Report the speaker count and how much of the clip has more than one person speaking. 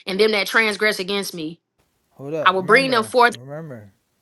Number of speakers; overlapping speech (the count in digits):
2, about 23%